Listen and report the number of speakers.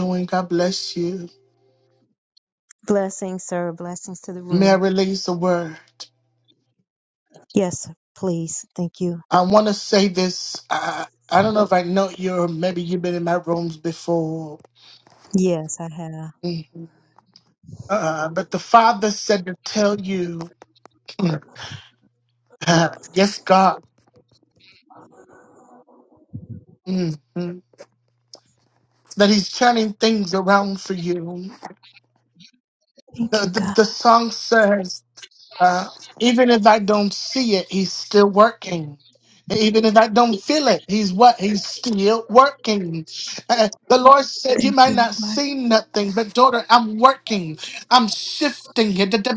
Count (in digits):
2